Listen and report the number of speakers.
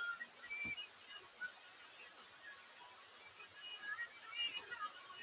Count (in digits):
0